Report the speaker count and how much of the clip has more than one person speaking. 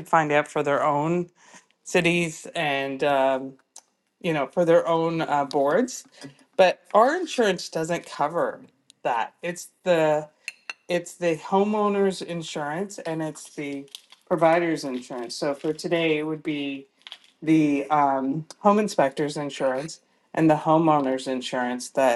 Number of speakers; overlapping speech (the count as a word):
one, no overlap